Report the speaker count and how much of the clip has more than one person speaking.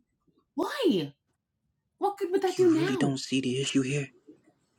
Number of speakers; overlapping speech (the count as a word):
two, about 12%